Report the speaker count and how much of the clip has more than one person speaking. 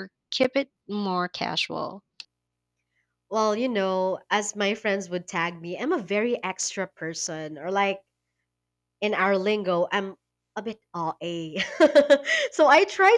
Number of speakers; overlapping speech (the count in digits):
2, no overlap